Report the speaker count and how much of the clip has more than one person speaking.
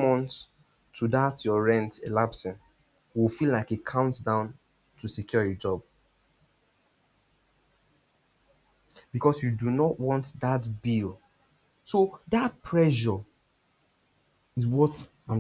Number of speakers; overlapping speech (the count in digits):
1, no overlap